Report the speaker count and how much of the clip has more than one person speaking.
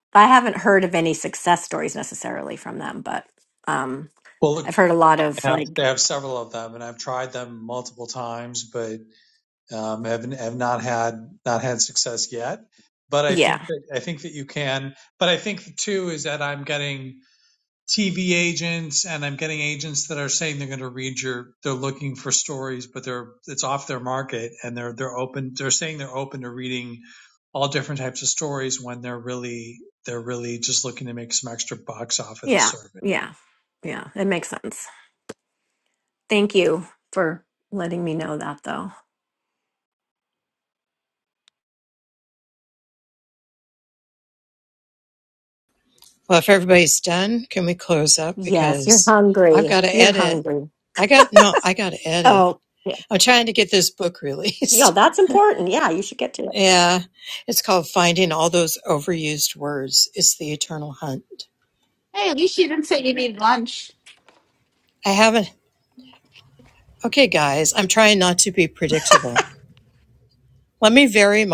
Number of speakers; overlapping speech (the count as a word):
four, about 4%